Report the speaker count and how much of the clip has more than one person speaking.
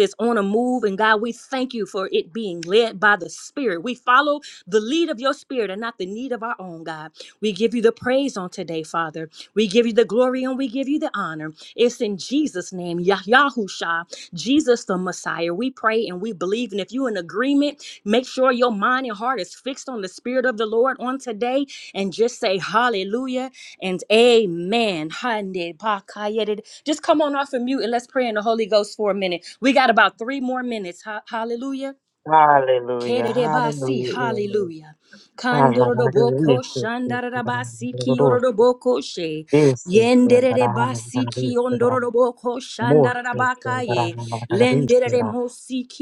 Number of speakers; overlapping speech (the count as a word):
two, about 16%